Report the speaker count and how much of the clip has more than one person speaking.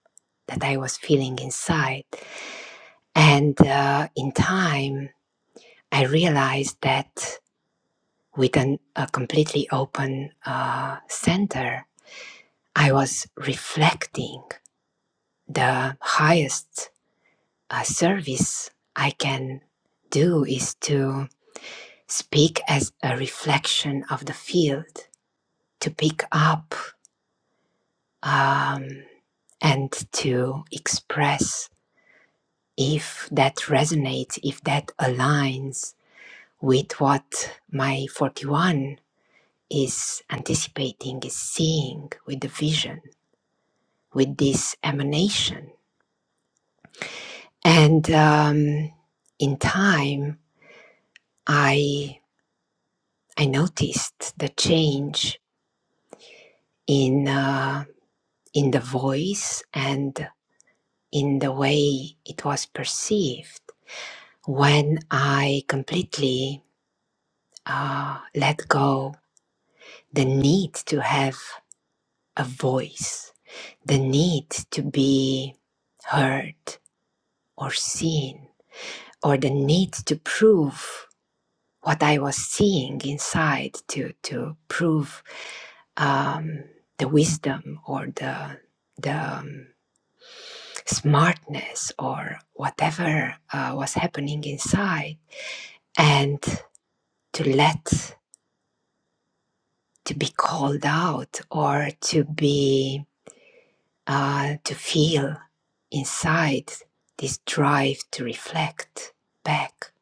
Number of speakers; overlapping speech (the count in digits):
1, no overlap